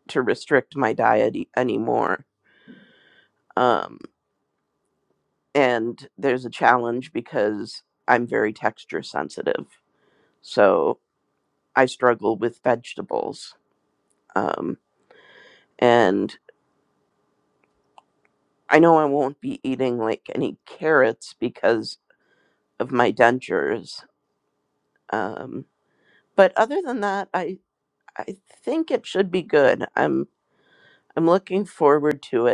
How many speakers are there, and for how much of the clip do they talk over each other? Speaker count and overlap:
one, no overlap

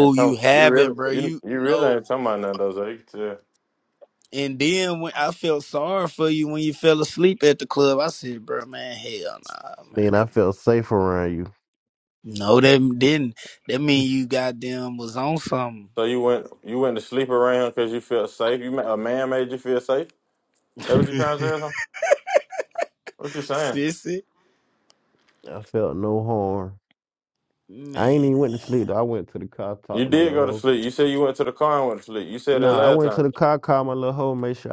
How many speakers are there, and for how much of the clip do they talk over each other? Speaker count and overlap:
three, about 12%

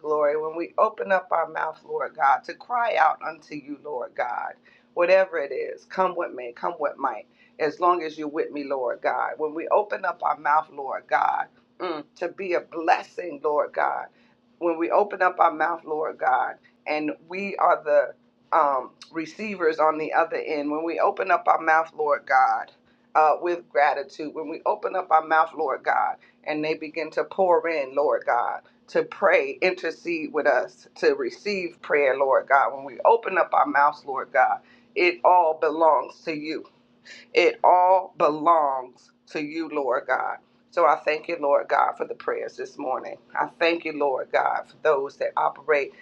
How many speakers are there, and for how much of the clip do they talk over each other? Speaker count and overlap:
one, no overlap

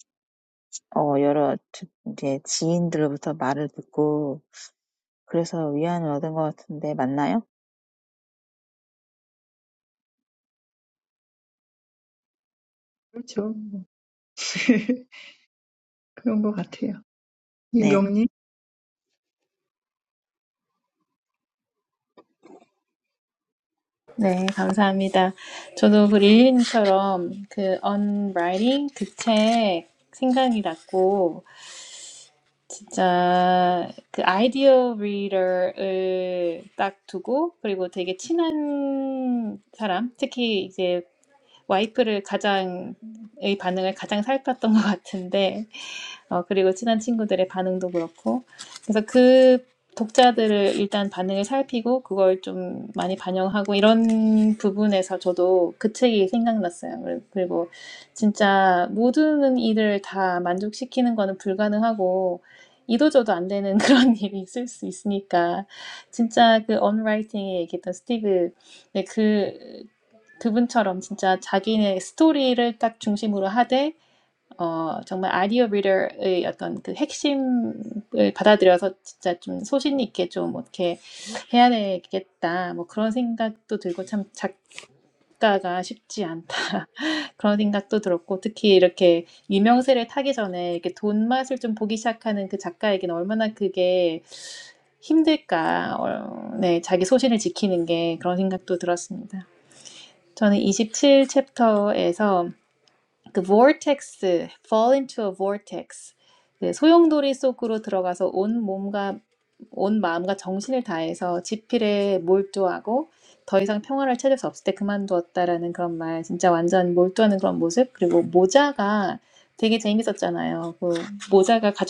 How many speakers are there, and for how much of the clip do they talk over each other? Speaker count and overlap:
three, under 1%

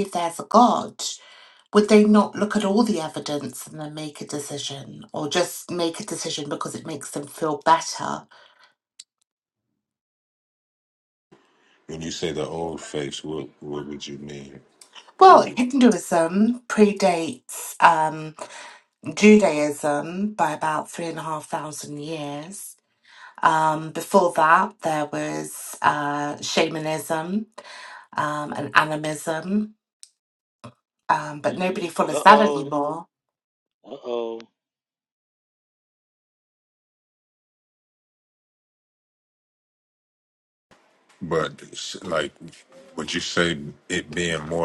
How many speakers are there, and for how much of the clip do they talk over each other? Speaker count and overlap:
three, about 3%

